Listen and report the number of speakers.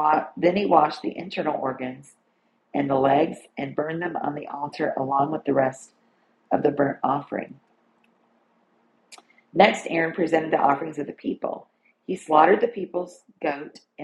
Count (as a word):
one